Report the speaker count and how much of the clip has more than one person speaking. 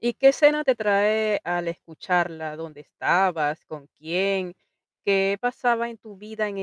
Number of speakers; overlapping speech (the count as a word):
one, no overlap